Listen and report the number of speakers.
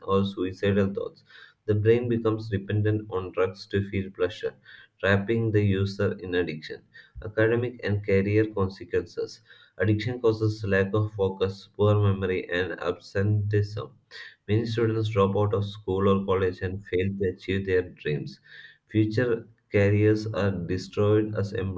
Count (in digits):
1